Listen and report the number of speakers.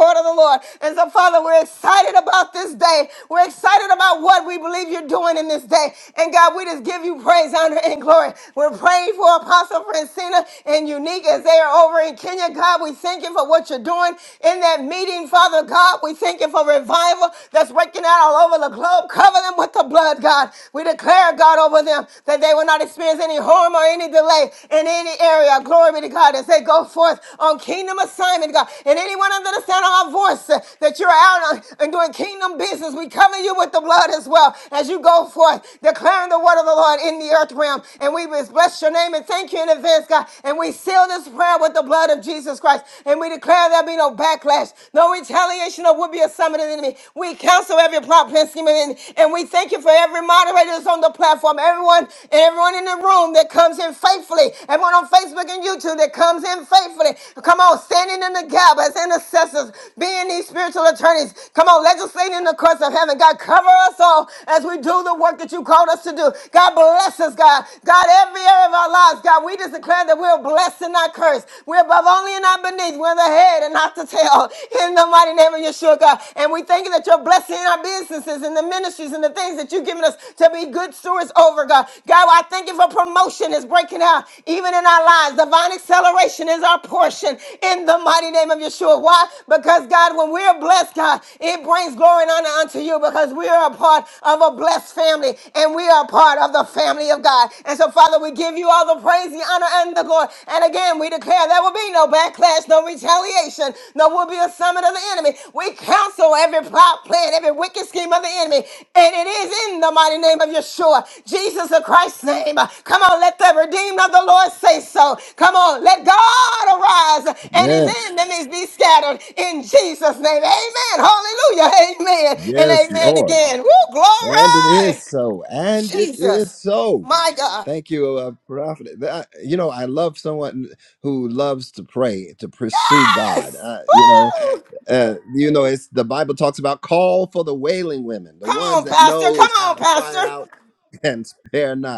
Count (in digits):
2